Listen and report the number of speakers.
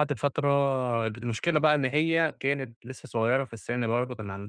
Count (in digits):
1